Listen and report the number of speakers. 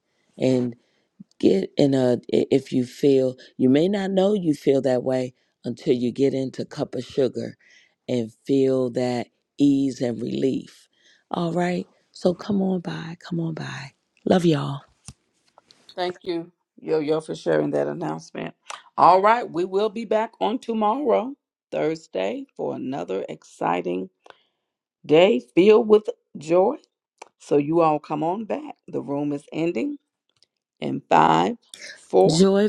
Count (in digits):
2